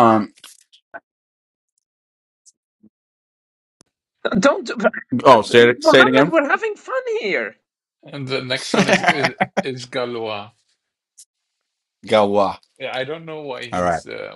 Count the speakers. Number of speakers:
3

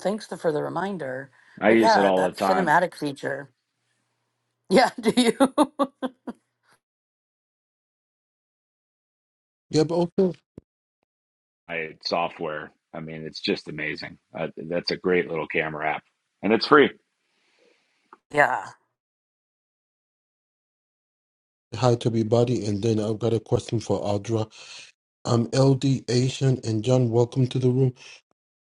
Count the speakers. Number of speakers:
3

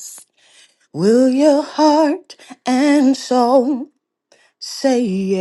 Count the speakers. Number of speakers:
1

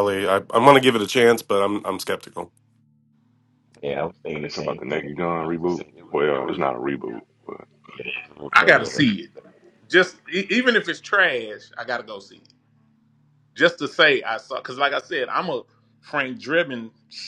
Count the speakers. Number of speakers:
4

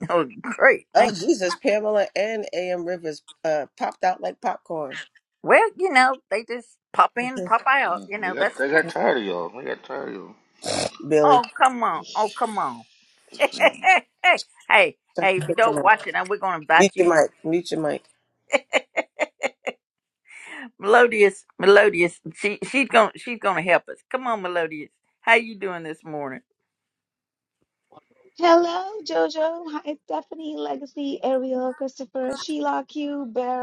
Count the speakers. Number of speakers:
4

